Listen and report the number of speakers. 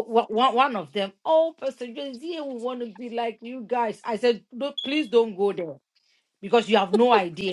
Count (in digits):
1